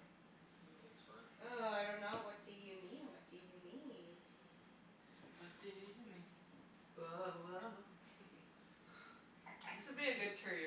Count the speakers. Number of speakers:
4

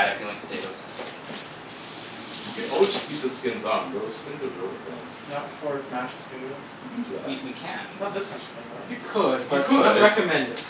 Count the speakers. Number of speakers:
4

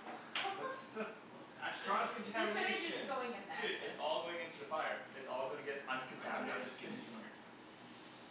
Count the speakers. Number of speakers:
3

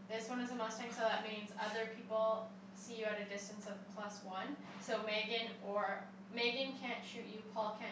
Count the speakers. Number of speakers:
1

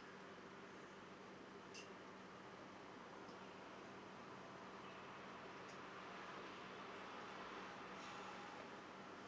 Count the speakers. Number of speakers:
0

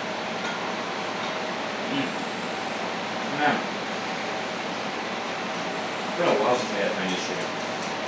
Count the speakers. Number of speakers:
1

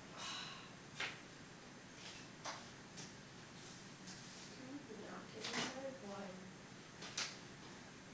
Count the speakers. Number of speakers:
1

